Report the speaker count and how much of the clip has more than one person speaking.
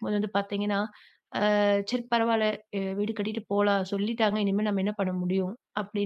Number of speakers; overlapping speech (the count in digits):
1, no overlap